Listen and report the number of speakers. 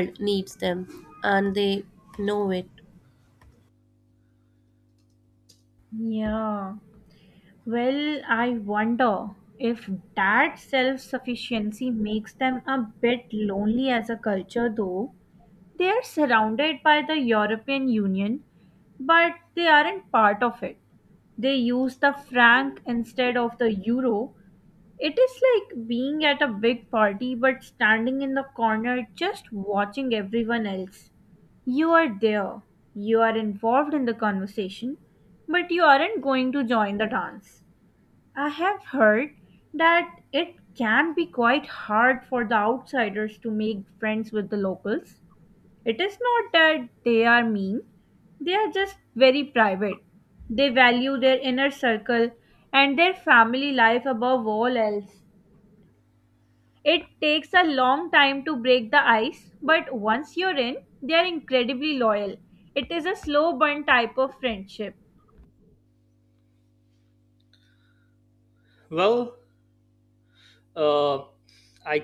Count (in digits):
3